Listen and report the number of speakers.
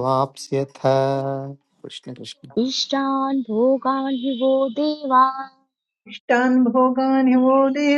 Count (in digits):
3